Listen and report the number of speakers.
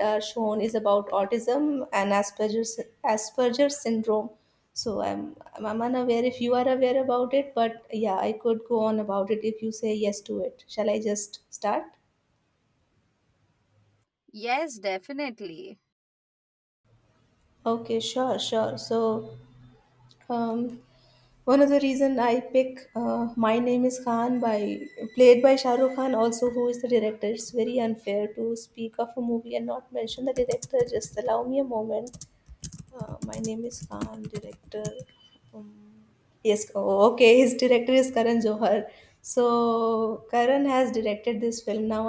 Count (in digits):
2